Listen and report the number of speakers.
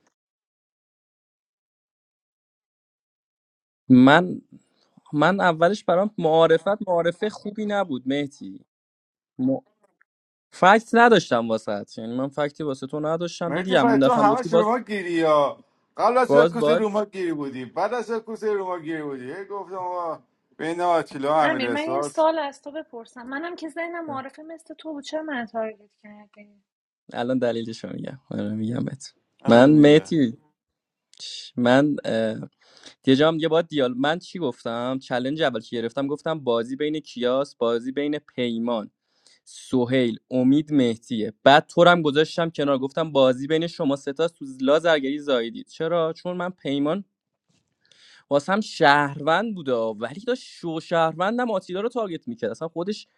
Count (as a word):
three